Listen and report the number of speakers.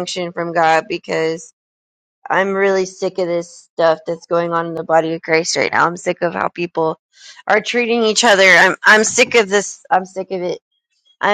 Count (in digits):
1